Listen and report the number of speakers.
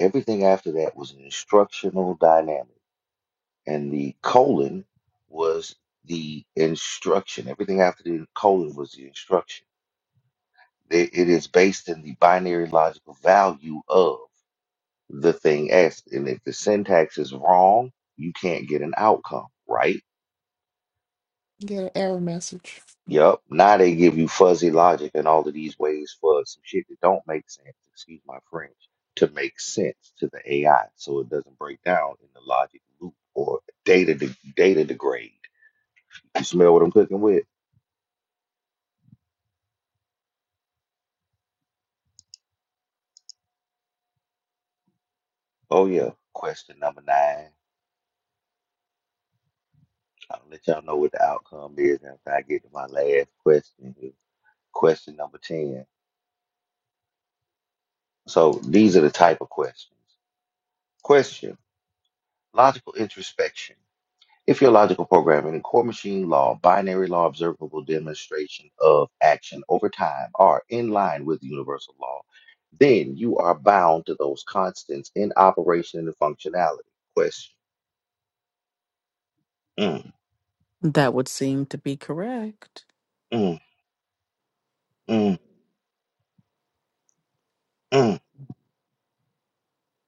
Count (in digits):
3